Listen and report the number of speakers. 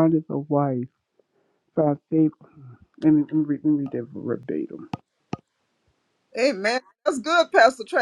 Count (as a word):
two